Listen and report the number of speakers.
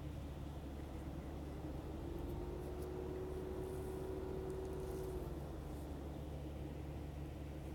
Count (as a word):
zero